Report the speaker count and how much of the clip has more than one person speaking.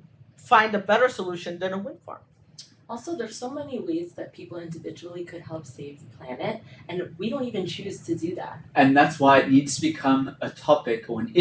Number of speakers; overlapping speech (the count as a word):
three, under 1%